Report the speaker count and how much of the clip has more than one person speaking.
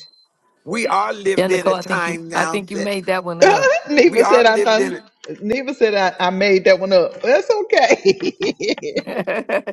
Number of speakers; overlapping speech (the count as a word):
three, about 25%